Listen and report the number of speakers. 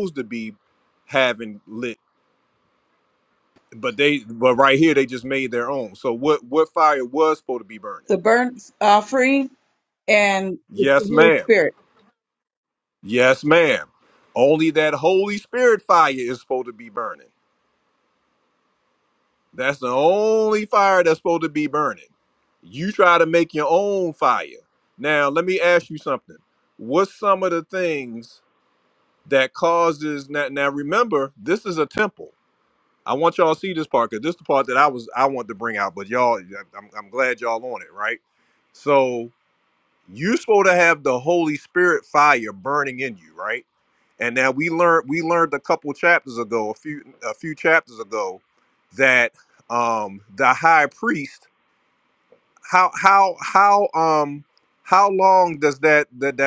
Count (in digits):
2